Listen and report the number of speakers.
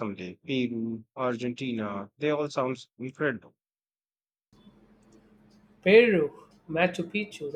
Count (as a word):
two